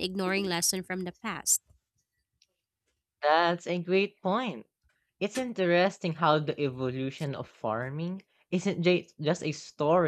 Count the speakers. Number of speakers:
2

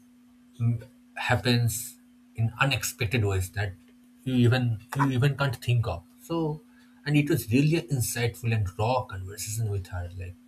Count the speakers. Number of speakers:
1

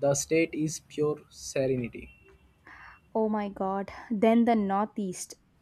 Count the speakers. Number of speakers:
2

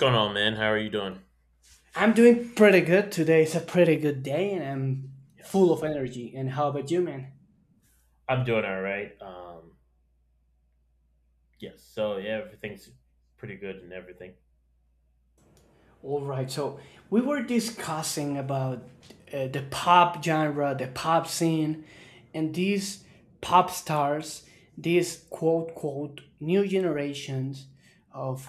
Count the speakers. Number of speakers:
2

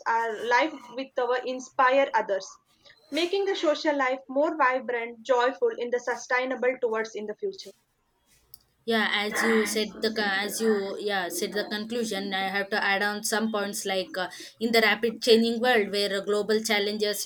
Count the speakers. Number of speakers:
2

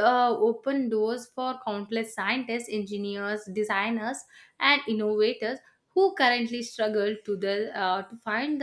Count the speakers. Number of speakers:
1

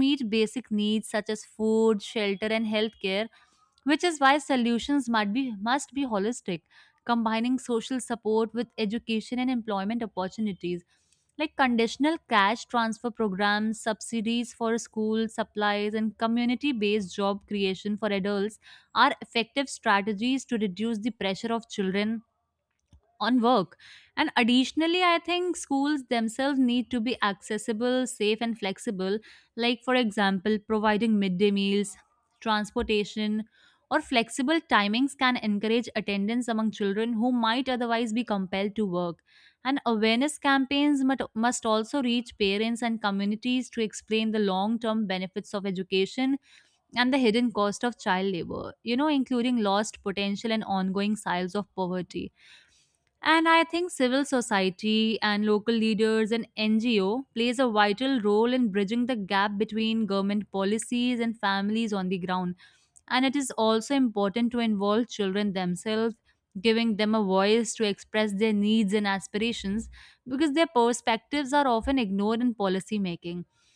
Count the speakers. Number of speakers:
1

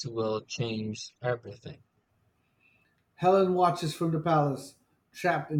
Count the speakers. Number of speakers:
2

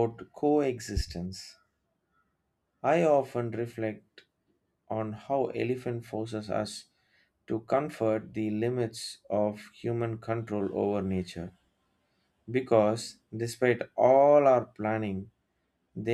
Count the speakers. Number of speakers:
1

